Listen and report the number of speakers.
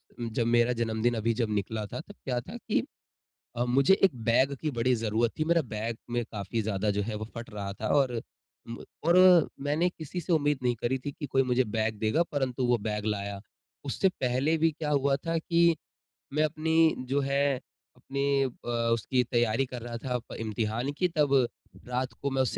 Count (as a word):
one